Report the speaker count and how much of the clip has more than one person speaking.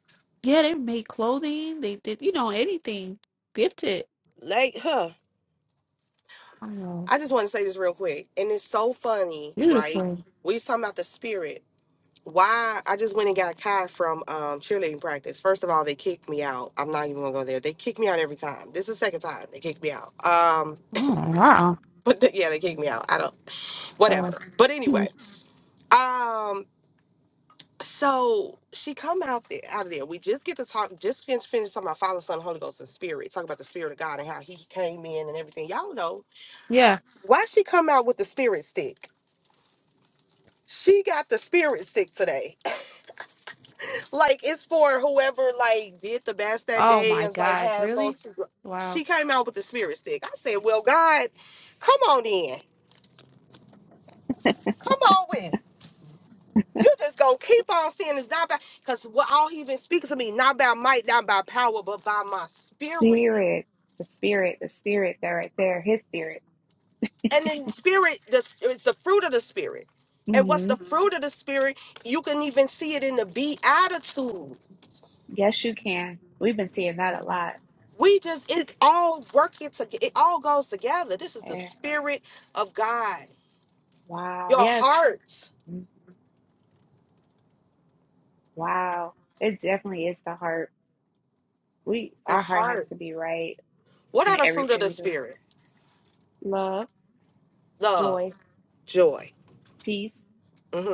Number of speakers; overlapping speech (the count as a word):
two, about 5%